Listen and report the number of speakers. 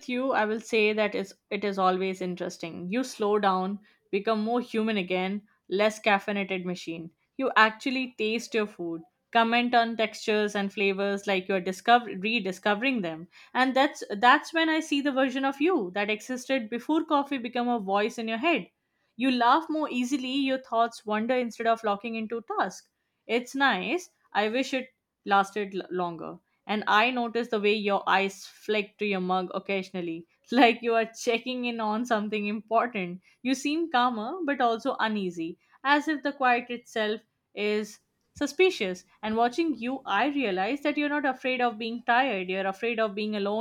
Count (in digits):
1